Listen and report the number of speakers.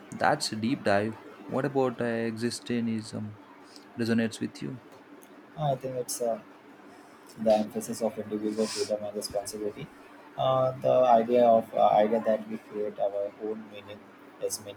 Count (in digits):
2